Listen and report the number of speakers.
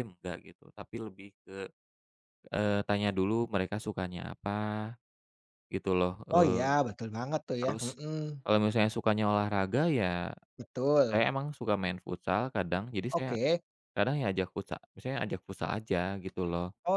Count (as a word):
two